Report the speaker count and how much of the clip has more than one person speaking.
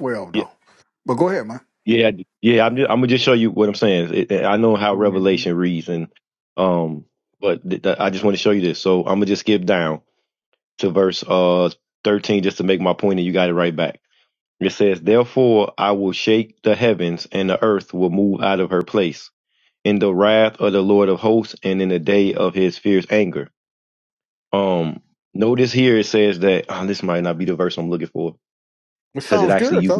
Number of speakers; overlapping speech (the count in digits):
2, about 5%